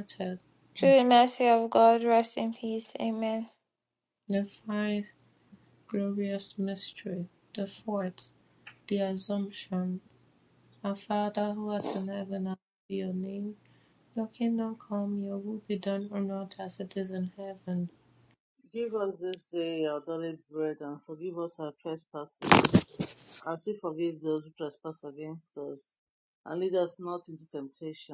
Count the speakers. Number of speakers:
three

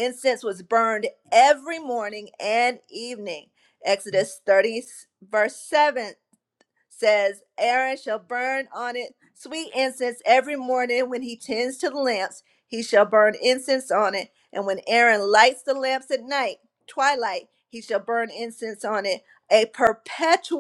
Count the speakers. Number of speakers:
one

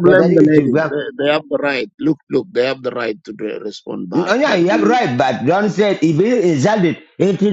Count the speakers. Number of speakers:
two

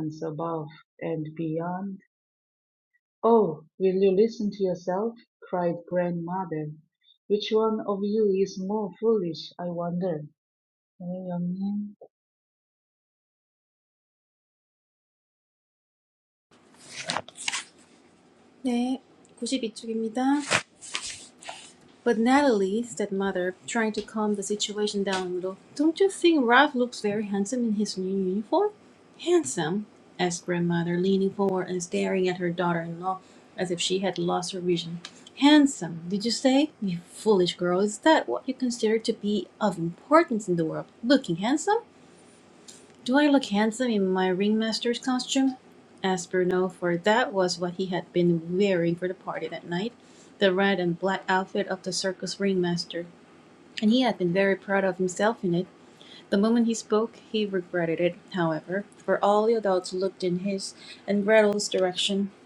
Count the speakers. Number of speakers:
two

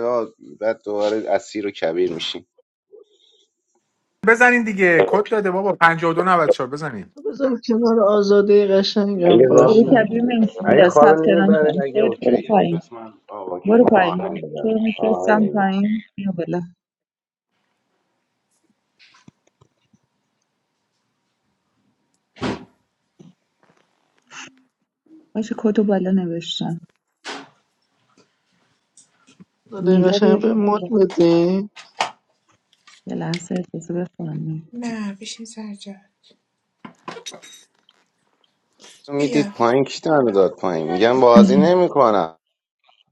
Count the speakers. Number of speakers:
five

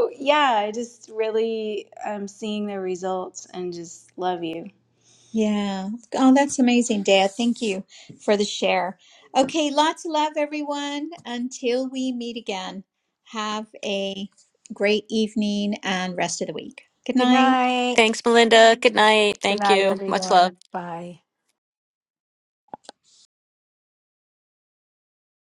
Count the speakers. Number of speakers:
four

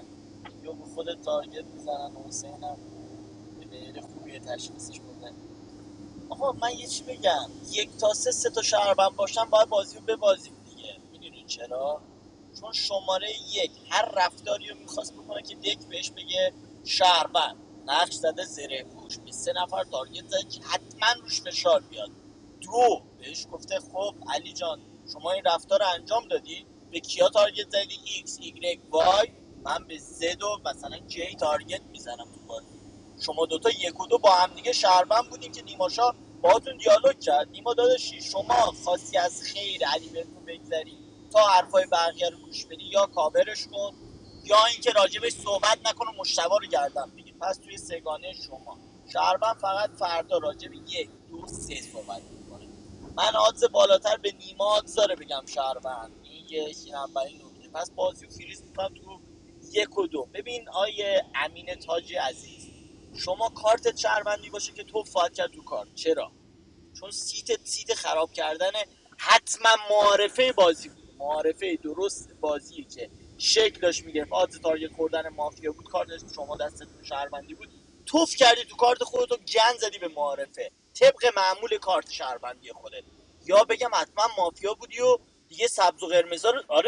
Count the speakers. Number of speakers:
one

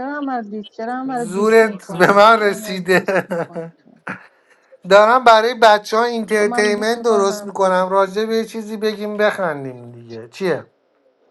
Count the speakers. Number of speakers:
two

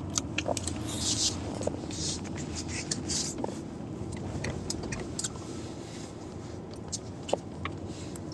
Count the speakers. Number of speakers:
zero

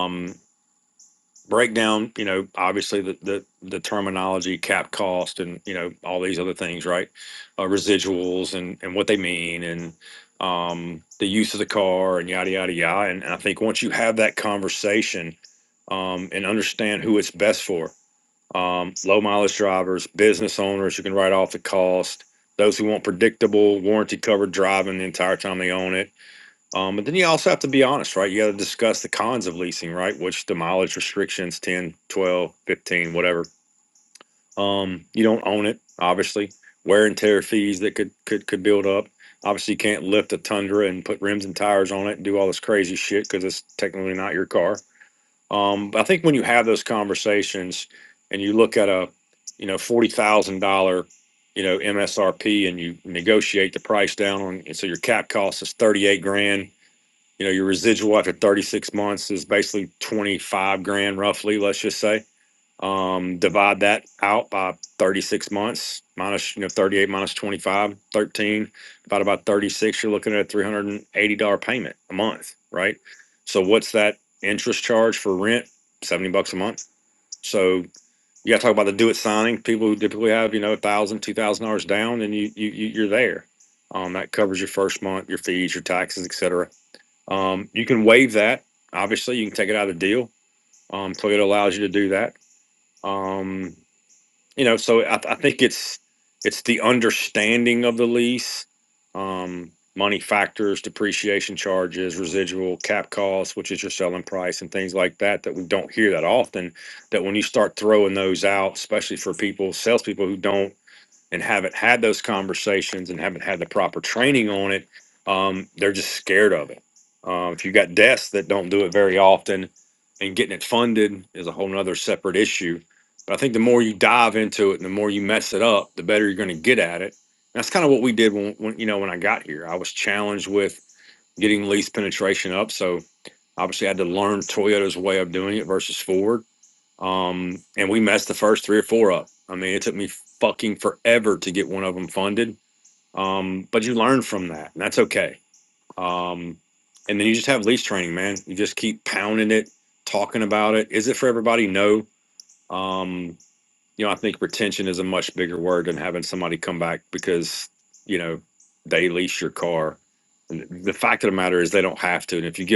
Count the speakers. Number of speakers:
one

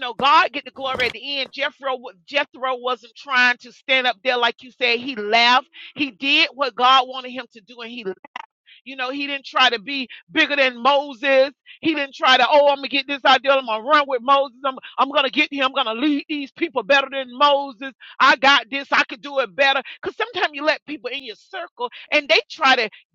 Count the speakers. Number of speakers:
one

